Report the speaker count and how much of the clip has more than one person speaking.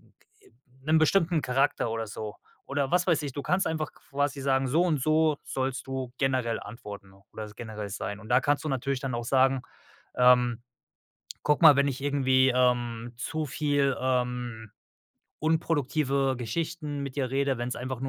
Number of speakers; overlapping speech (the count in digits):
1, no overlap